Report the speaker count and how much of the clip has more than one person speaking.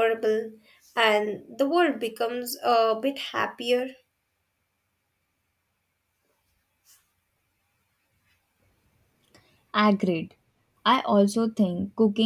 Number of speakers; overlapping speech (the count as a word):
two, no overlap